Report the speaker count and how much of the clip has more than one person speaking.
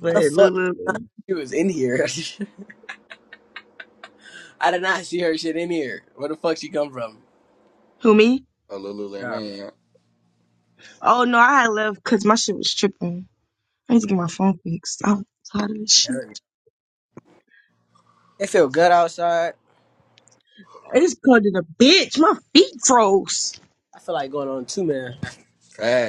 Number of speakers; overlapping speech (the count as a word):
three, about 3%